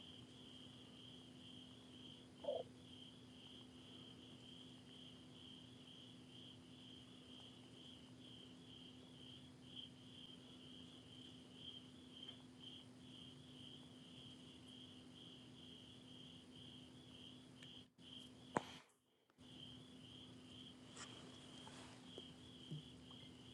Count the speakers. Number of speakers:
0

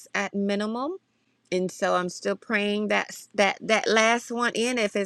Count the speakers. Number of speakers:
1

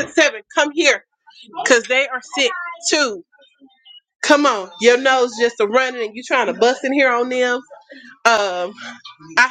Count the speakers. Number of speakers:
1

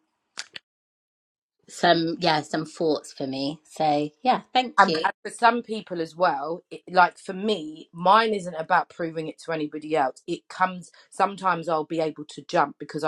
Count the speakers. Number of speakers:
2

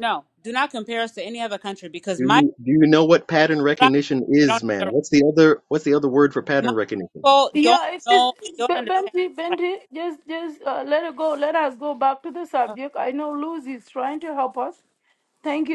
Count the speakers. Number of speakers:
3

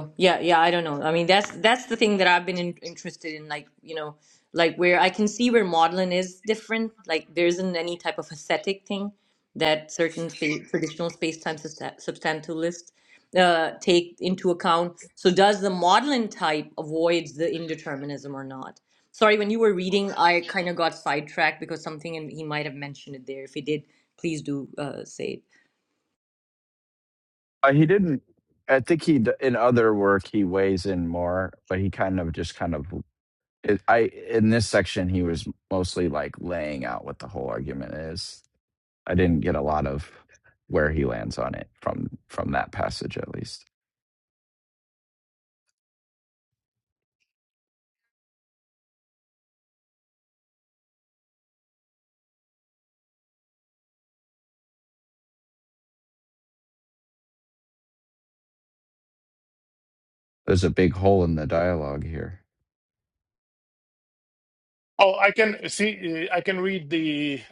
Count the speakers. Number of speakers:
3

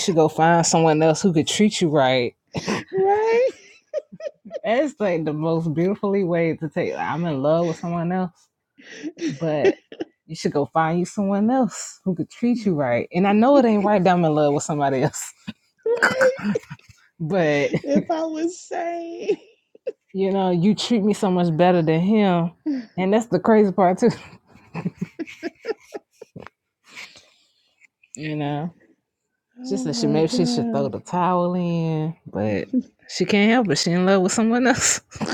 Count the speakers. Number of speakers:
2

